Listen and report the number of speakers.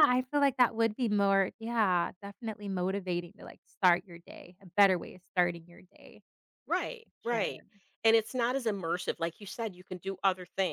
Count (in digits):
2